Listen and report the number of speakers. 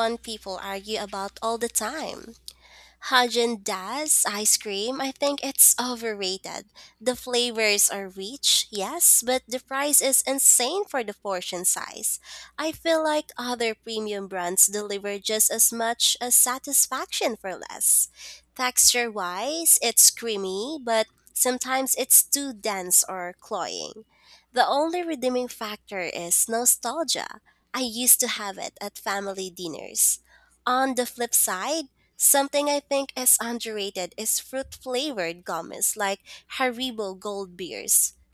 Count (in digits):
1